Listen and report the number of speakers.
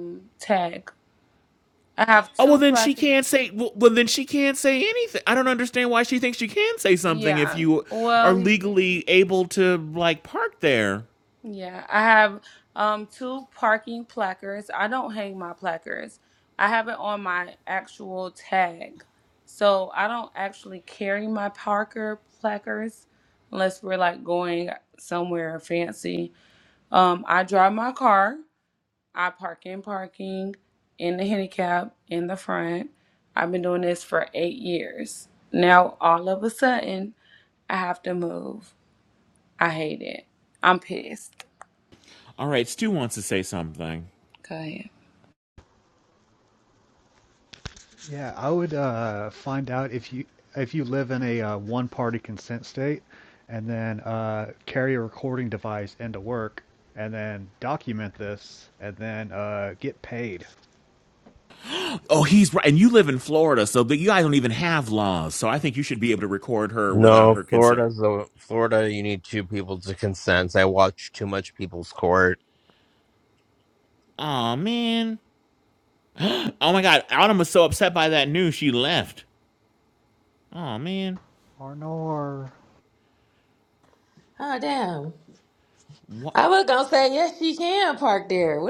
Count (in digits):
5